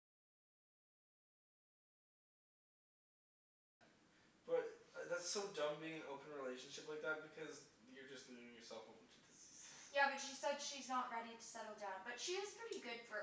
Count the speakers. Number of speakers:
2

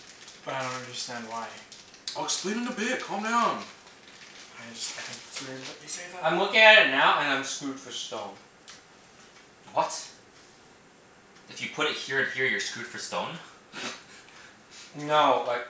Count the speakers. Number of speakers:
4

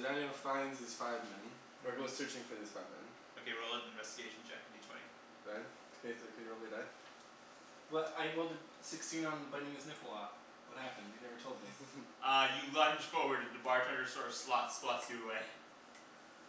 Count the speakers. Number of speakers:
3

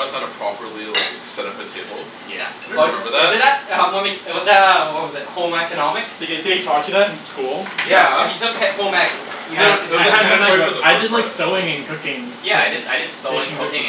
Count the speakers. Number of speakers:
4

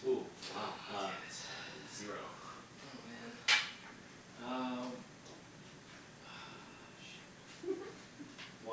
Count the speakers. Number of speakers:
2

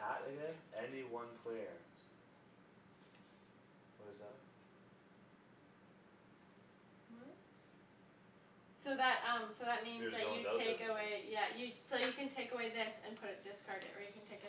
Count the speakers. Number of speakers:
2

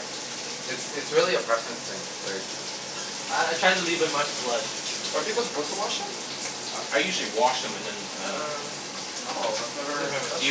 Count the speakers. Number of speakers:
4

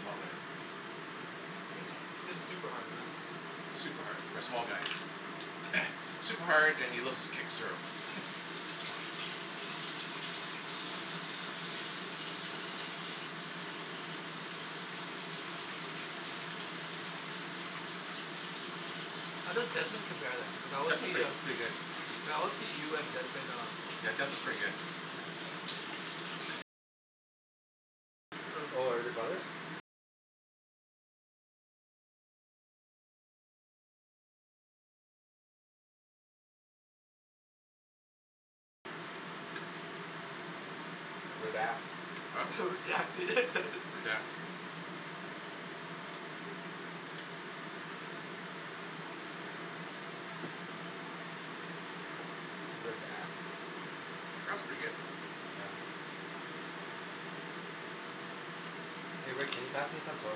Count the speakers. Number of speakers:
3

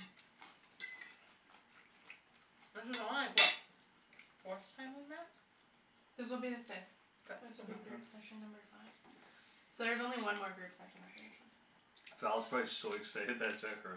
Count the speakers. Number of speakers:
3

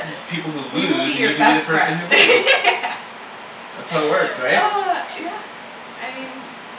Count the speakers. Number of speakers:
2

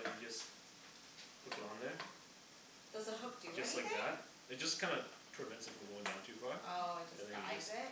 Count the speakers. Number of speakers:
2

